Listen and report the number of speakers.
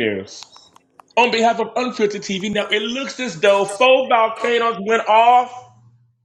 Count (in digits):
1